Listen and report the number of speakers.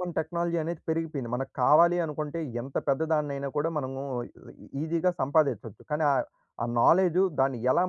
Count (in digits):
1